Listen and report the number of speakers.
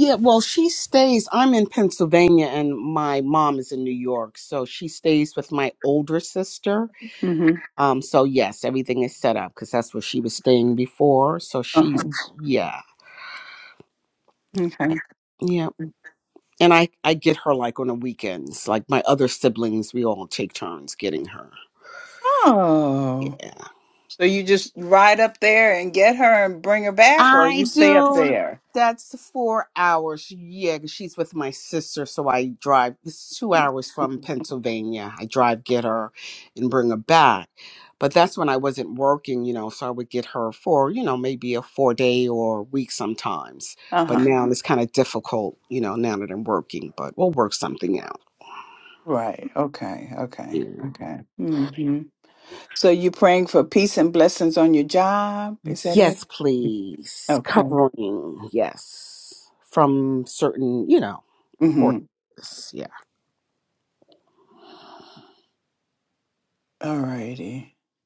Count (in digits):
2